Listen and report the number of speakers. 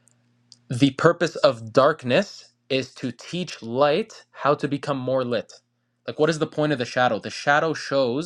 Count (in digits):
1